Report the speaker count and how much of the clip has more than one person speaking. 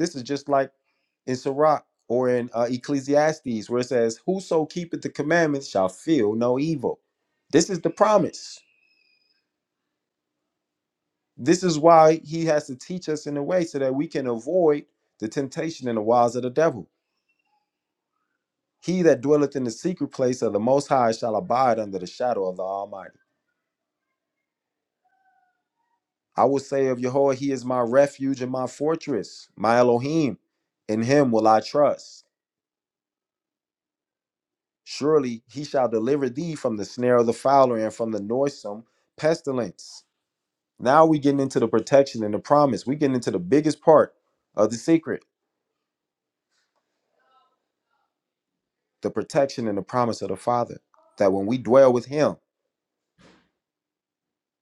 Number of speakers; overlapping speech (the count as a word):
one, no overlap